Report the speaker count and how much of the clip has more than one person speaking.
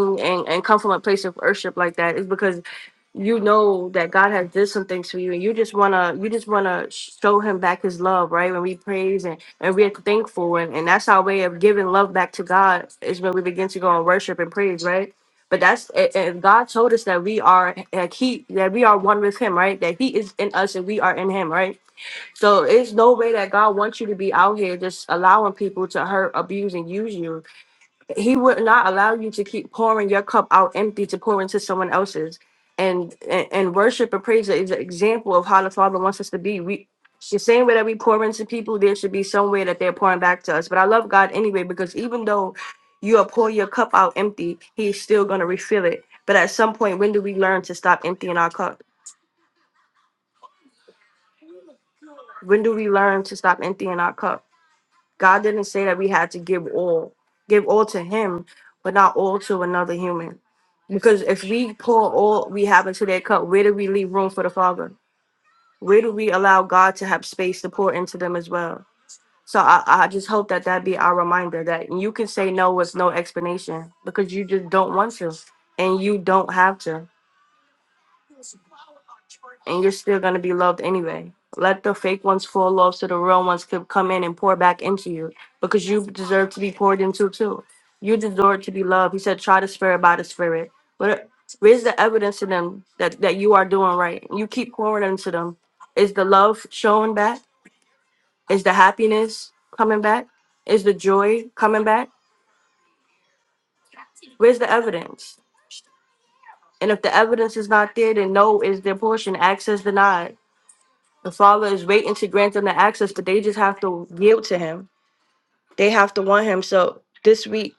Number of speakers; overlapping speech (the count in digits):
1, no overlap